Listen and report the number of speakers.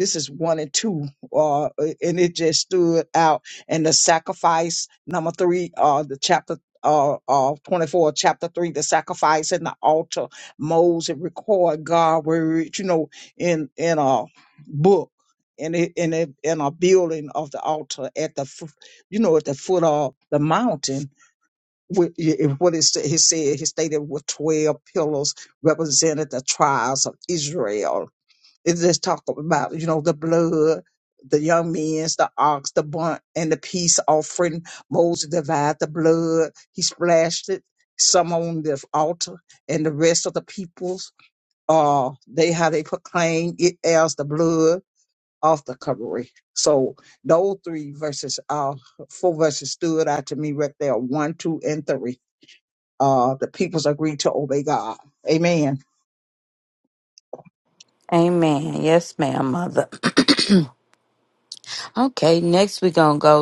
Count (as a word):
two